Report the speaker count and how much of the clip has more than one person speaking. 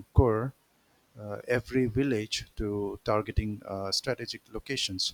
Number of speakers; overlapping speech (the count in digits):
1, no overlap